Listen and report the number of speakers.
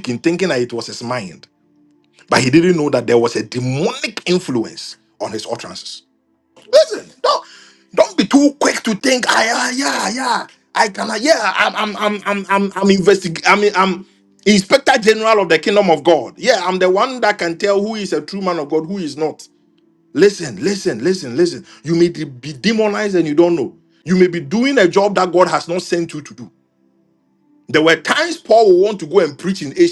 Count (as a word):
one